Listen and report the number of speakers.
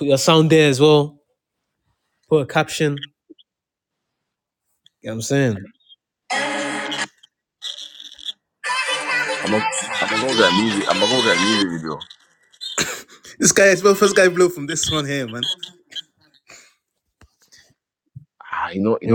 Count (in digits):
3